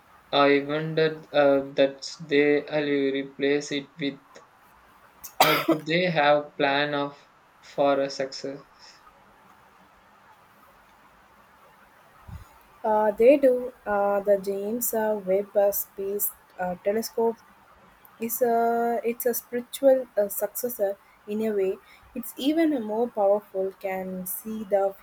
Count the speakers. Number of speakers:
2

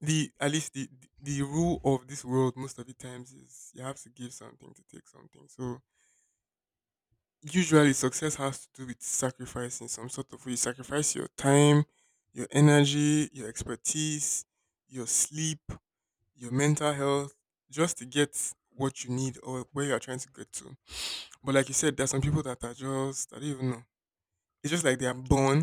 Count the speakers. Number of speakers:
1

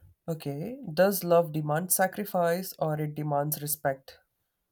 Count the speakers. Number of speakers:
1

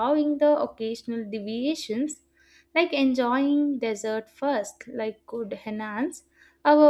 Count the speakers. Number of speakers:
1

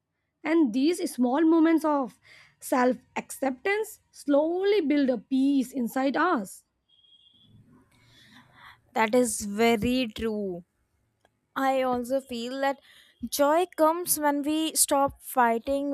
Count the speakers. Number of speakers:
2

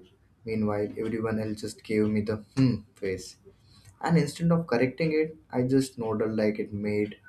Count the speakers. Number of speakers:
1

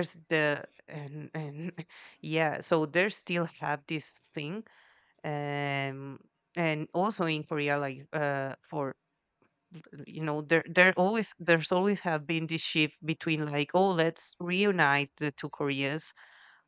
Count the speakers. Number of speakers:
1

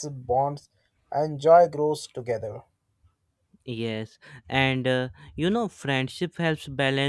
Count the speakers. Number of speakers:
2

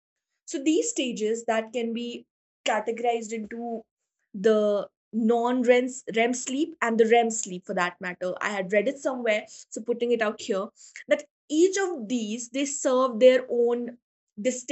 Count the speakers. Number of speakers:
1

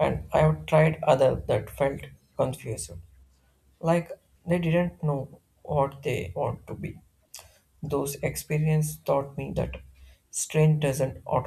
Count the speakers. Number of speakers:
1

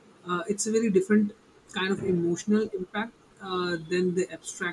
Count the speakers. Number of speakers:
1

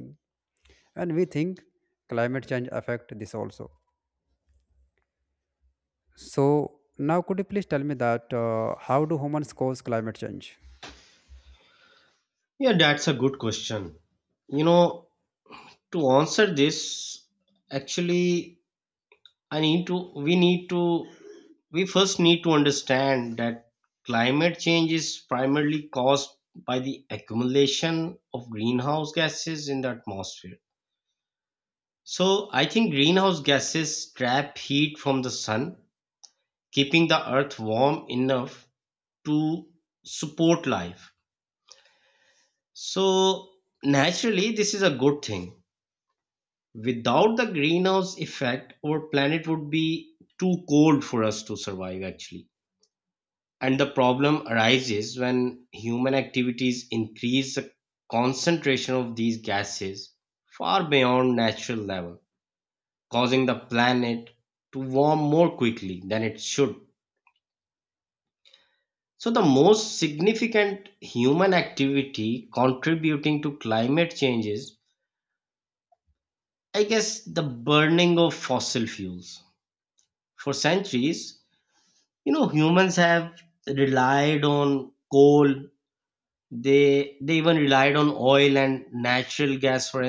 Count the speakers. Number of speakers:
2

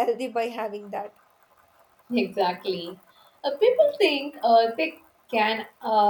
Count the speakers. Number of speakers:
2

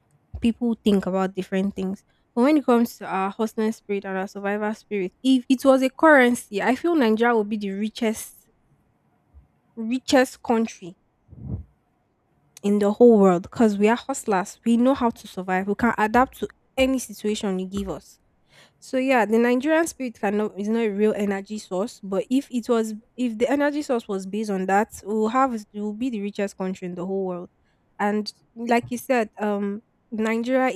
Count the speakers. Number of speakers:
1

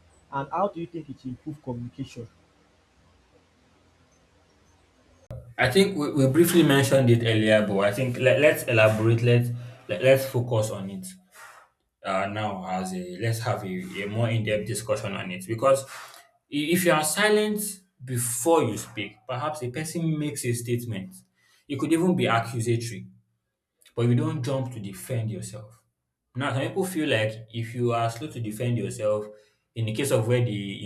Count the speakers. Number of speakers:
2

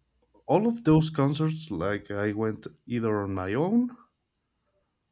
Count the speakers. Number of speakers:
1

